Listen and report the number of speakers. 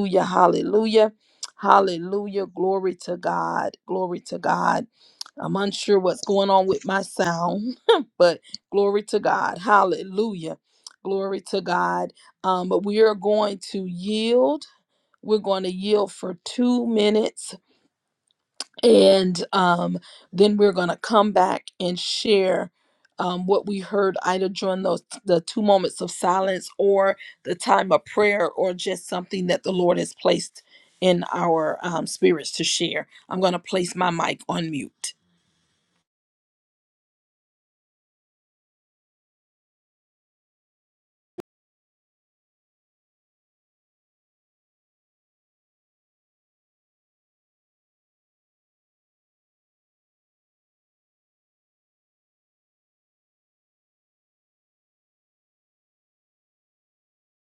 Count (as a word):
one